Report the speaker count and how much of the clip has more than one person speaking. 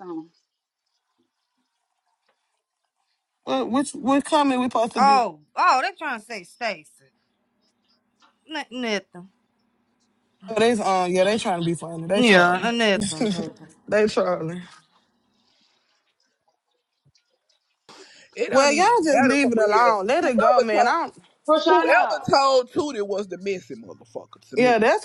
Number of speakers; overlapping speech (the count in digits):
4, about 16%